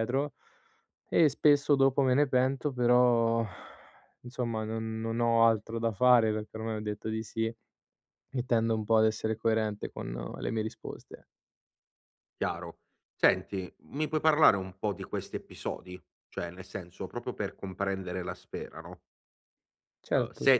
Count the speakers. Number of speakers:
2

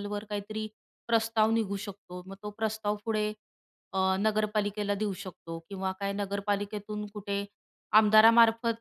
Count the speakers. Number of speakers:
1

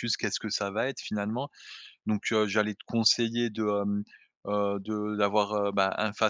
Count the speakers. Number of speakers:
1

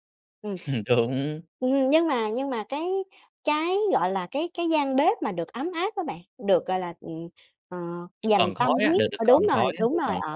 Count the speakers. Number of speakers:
2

